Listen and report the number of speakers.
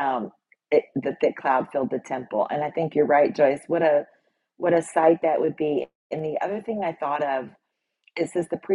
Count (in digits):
1